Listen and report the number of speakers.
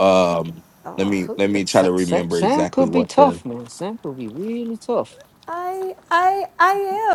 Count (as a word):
three